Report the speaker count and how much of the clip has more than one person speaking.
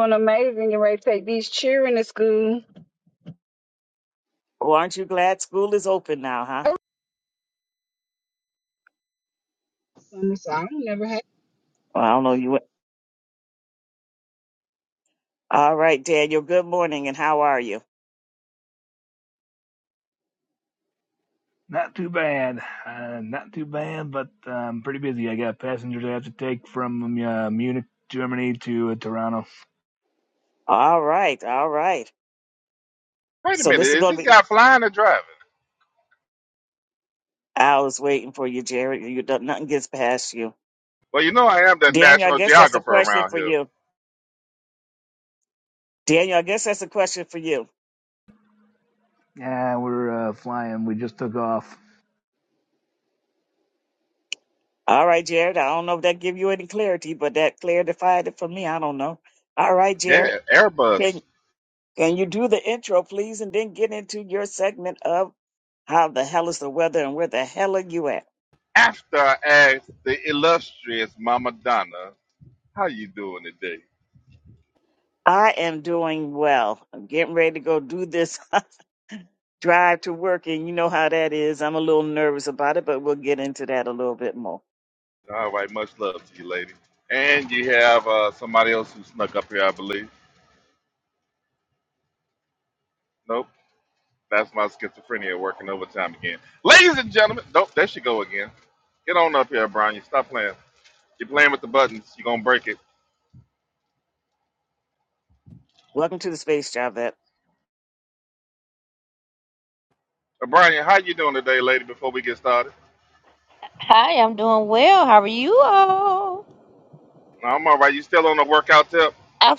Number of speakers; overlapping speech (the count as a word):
five, about 2%